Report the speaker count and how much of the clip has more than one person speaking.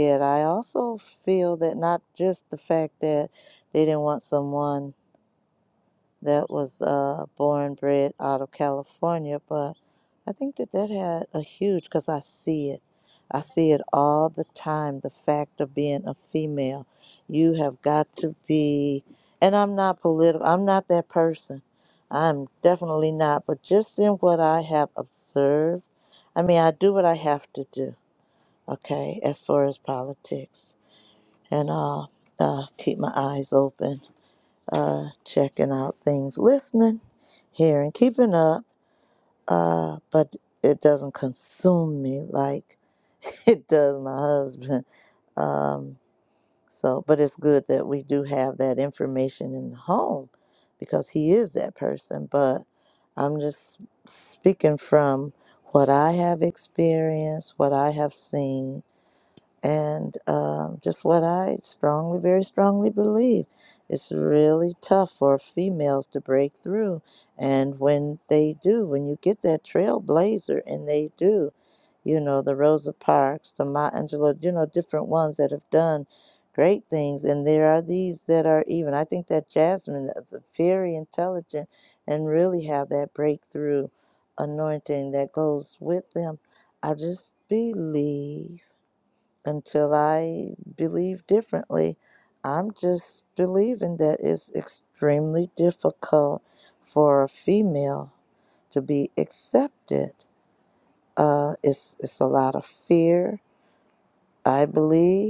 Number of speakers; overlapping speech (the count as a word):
one, no overlap